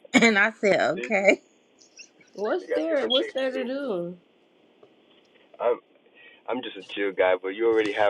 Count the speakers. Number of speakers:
3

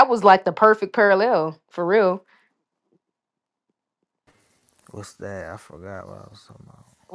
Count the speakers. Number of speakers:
2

